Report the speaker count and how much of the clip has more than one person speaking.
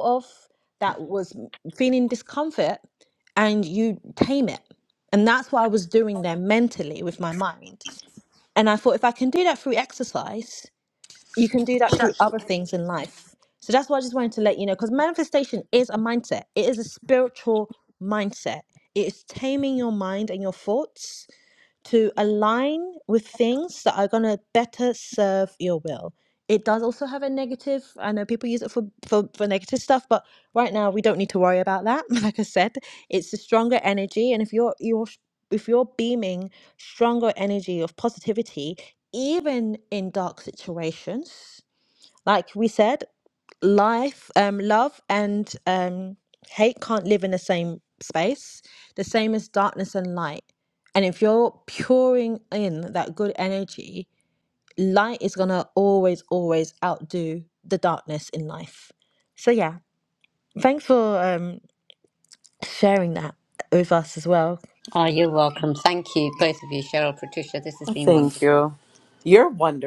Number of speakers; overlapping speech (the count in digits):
3, about 1%